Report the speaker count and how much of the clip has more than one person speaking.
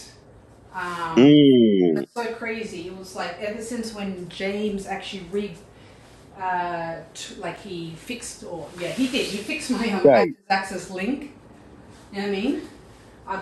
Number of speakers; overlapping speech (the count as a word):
two, about 4%